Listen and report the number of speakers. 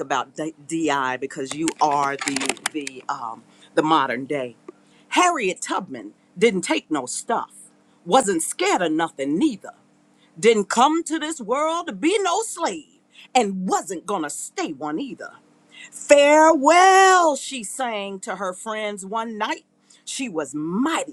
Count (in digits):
1